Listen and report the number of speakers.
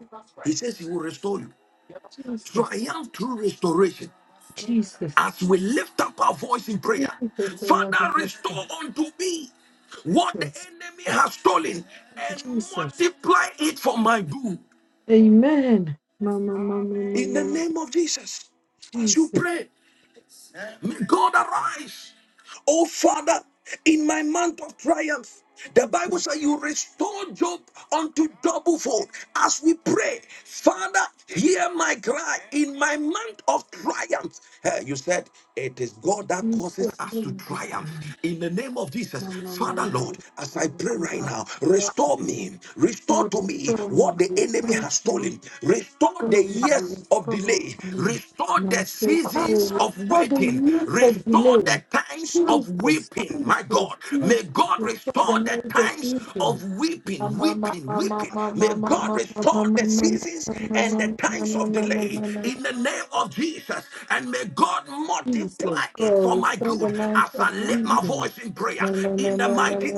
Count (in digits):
2